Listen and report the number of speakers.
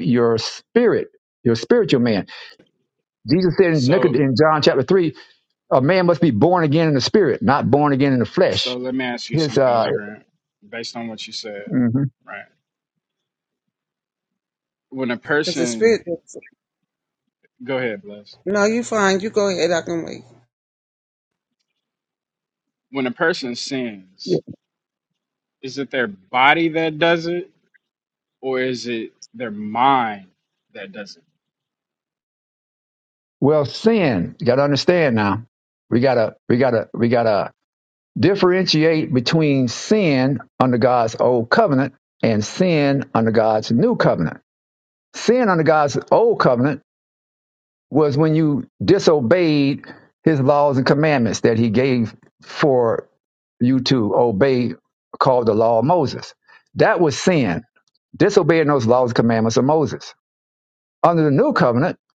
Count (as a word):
three